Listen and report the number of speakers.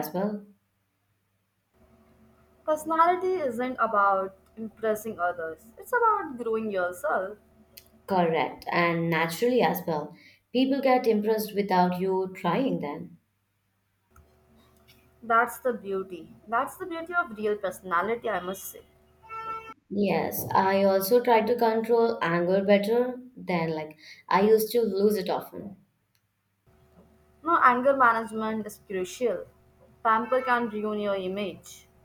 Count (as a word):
two